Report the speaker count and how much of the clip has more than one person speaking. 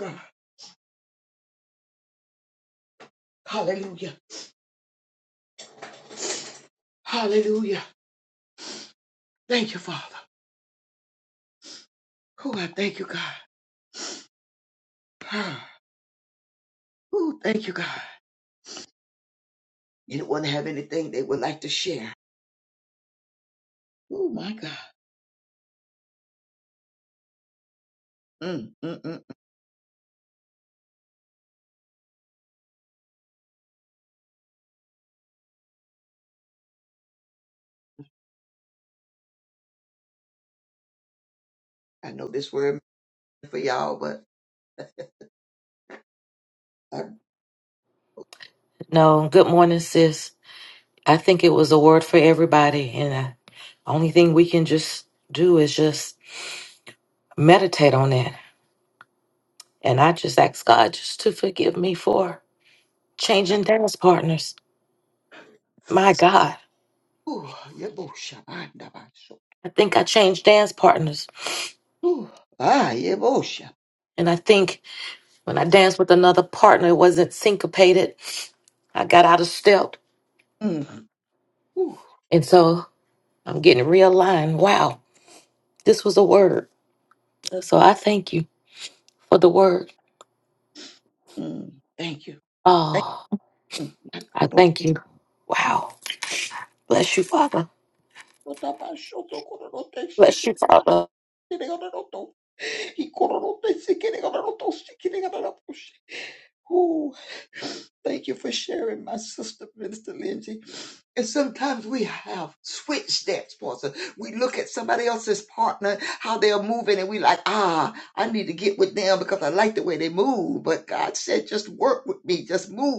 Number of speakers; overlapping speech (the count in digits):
2, about 1%